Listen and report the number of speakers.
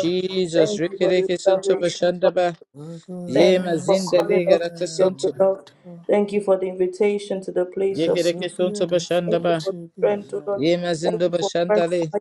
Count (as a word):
two